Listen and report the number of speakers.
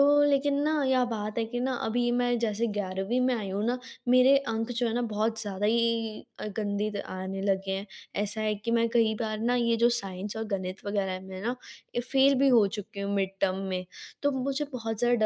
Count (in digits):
1